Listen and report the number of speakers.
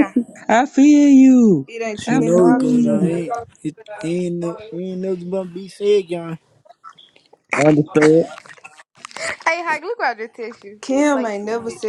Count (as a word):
four